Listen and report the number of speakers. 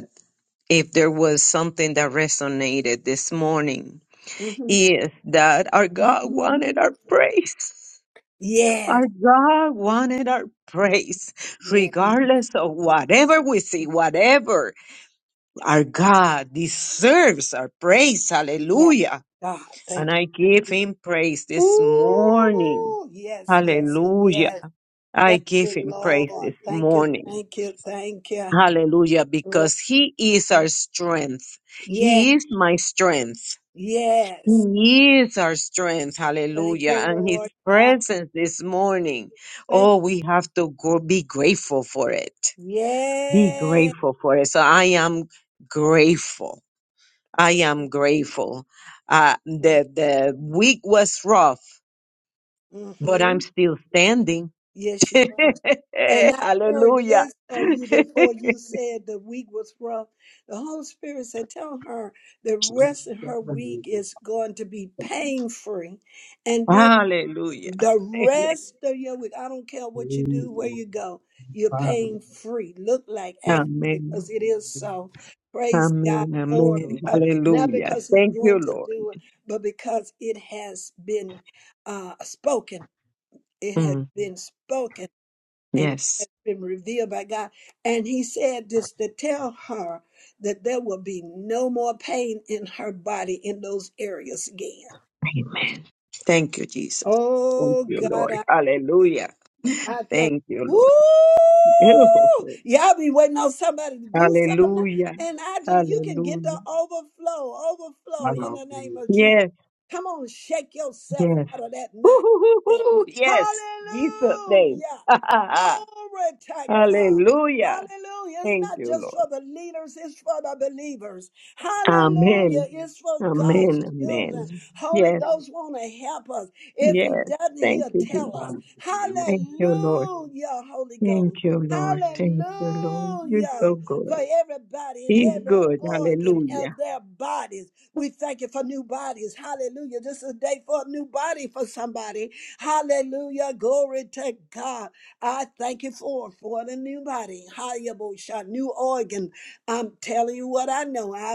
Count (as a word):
two